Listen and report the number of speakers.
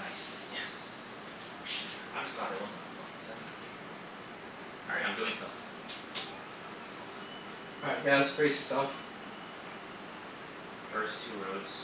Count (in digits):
2